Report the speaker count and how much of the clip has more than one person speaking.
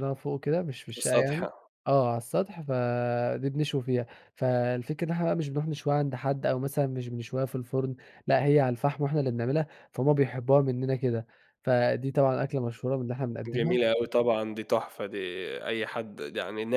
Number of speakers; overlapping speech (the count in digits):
2, about 5%